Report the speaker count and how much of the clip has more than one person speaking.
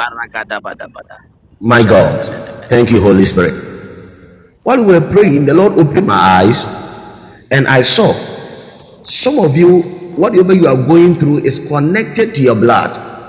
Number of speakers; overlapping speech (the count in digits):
2, about 9%